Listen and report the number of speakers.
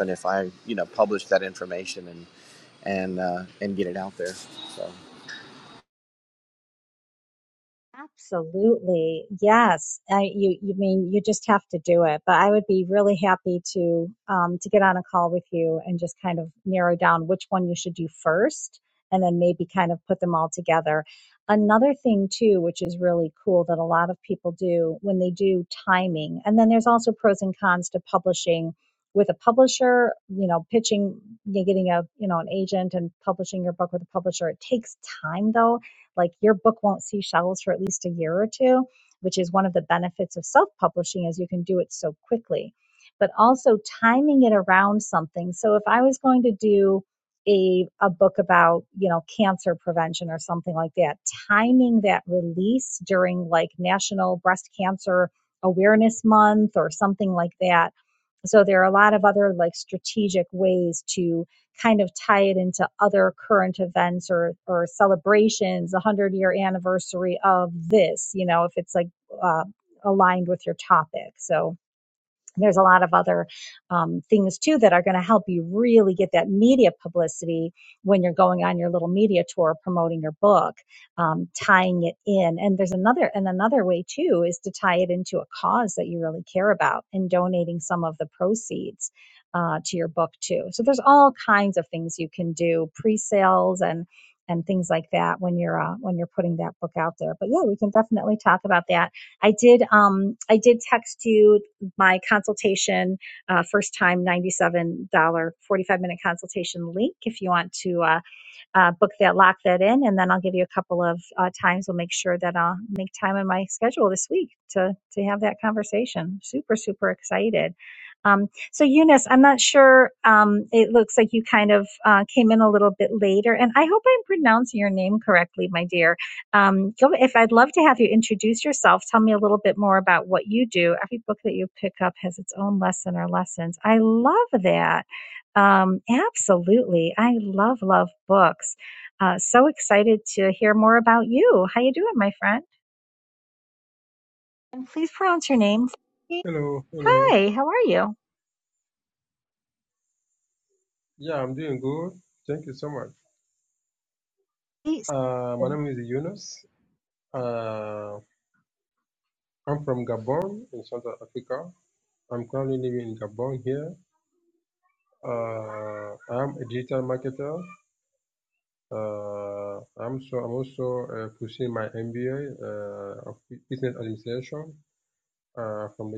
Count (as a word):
three